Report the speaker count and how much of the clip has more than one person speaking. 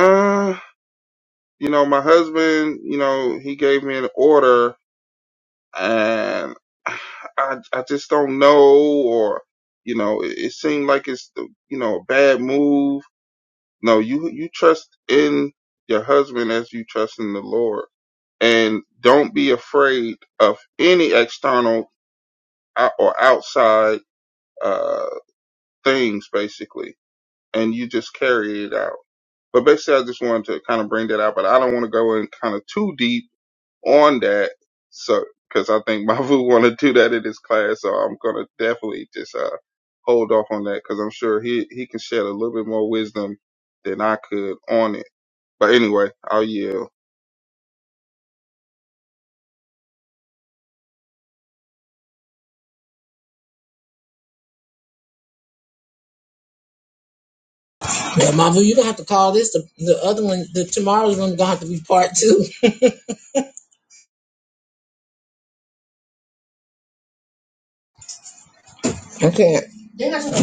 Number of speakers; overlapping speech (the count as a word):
two, no overlap